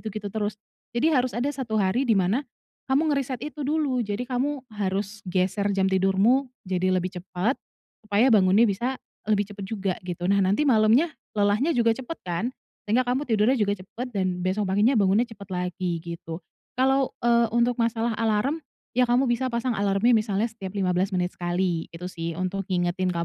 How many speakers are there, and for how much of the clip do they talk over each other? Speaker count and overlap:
1, no overlap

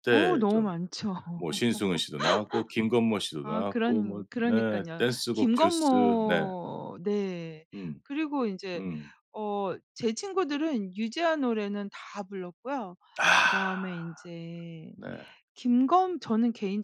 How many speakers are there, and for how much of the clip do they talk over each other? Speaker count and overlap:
2, about 23%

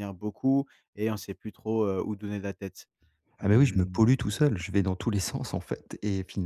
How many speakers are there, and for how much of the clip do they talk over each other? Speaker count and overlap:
2, about 9%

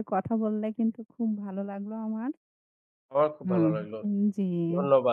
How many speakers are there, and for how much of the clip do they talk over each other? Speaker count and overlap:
2, about 3%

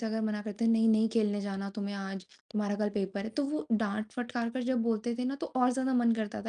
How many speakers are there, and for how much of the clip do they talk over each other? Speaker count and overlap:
1, no overlap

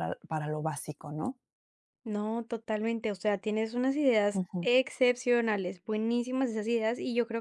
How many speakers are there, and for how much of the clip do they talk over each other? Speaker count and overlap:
2, about 4%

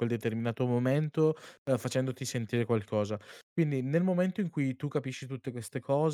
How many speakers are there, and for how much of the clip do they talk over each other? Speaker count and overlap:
1, no overlap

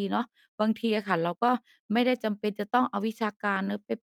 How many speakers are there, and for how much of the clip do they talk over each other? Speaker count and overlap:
1, no overlap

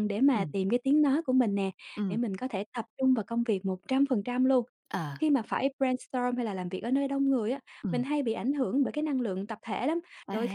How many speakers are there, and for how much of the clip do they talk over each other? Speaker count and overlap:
2, about 7%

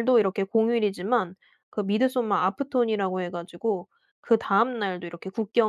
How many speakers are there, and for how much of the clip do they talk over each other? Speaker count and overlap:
1, no overlap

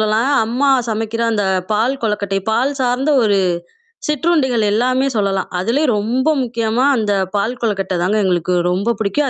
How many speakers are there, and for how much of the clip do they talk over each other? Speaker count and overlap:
1, no overlap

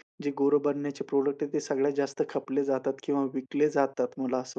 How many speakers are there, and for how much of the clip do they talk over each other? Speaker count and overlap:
1, no overlap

